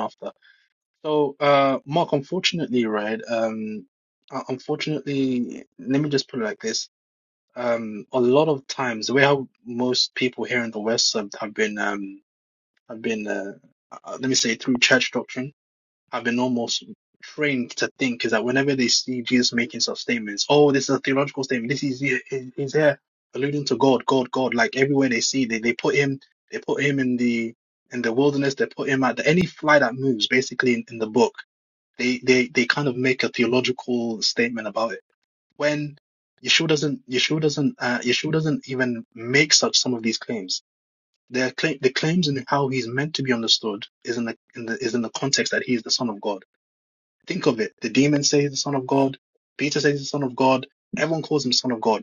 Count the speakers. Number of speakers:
one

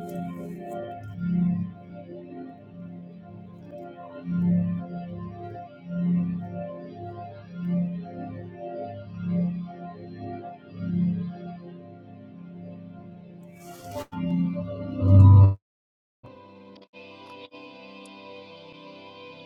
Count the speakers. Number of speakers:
zero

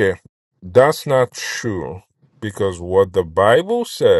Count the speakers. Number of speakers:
one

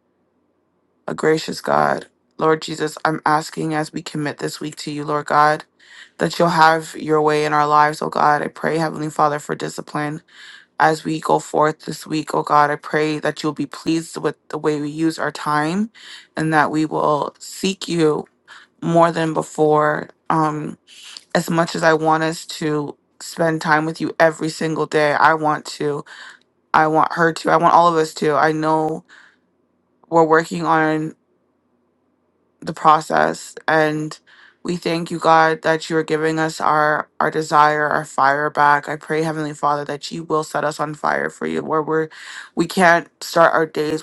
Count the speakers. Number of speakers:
one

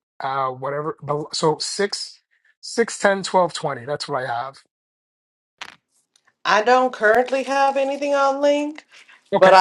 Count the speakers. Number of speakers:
two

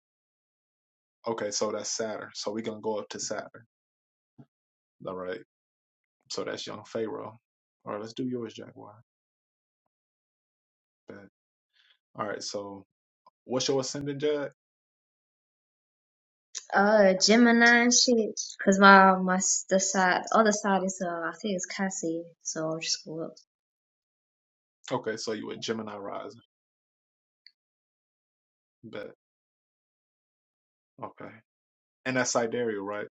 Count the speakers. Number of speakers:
two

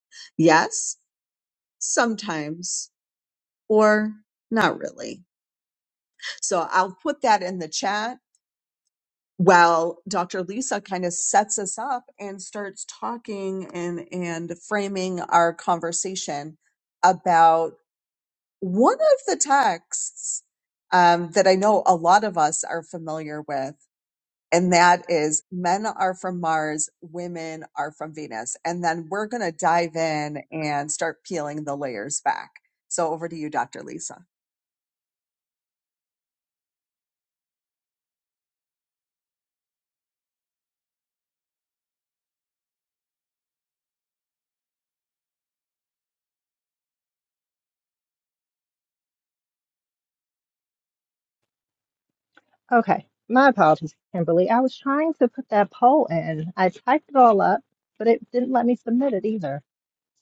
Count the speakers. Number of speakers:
two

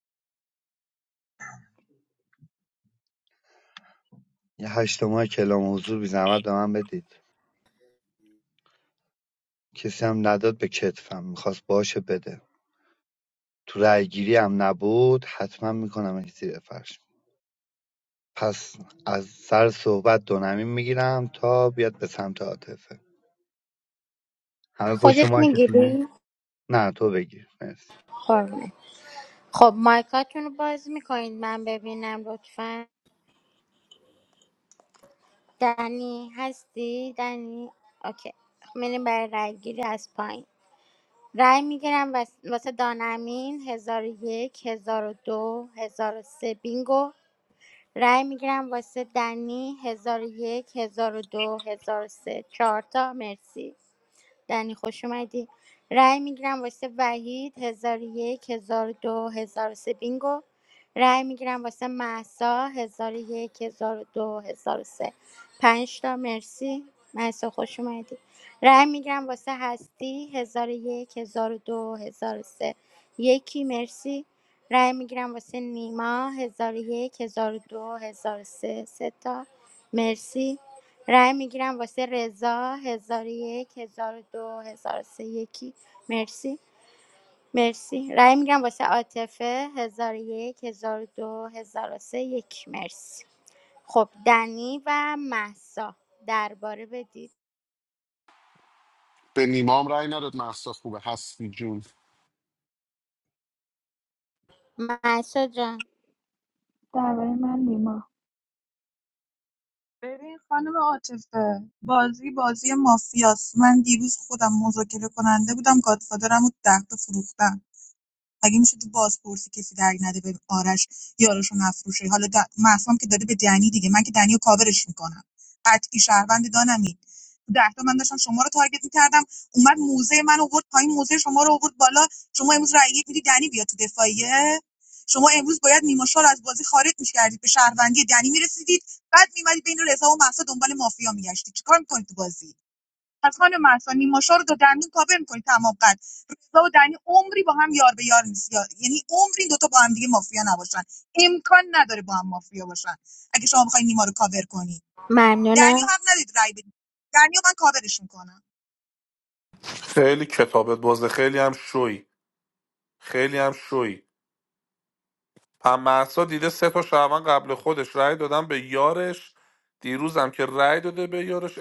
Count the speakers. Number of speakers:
six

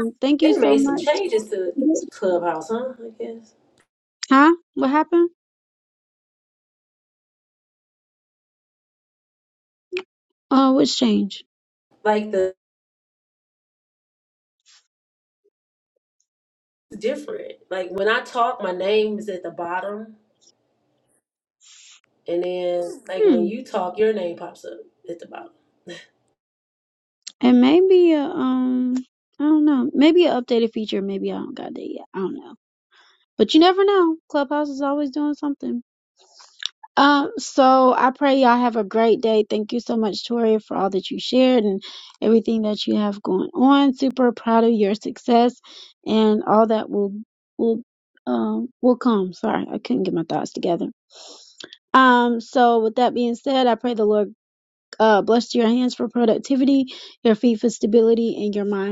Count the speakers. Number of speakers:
two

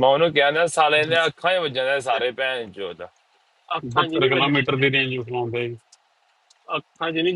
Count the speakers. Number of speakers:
three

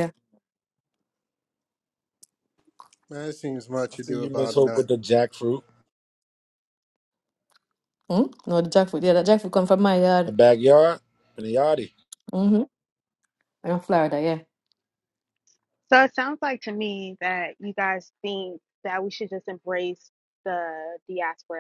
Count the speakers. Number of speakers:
four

